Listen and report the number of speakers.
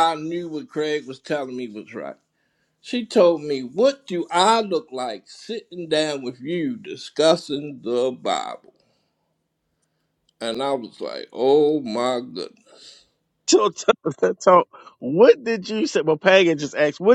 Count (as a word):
two